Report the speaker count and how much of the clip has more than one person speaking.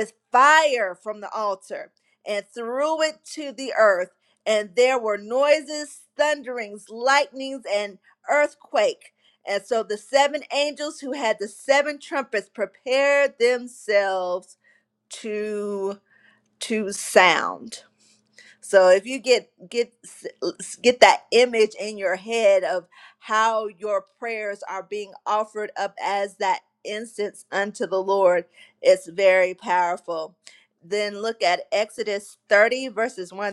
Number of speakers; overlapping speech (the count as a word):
one, no overlap